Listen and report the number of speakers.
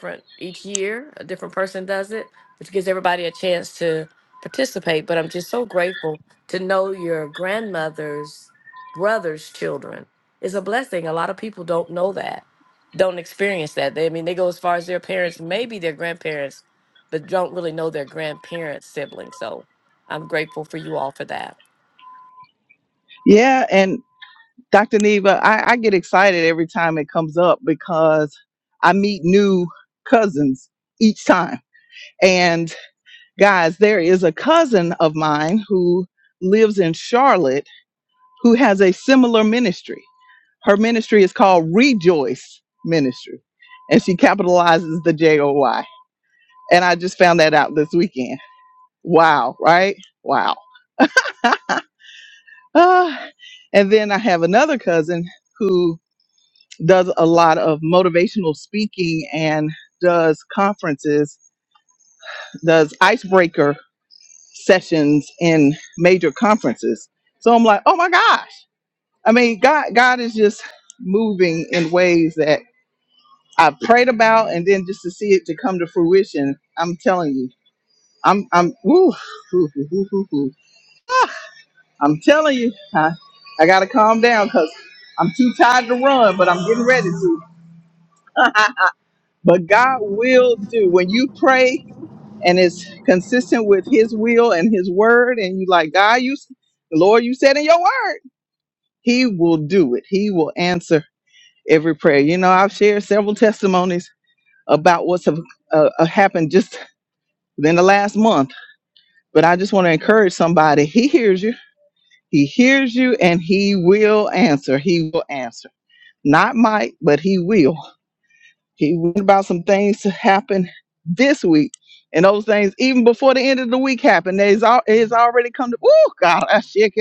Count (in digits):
2